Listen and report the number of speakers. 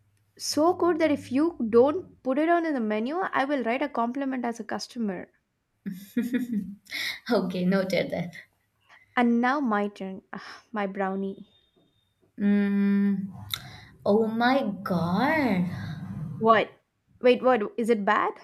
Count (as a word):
two